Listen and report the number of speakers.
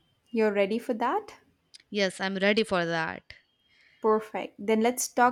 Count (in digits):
2